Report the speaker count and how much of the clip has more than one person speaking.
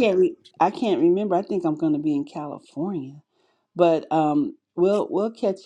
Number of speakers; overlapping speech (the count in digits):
1, no overlap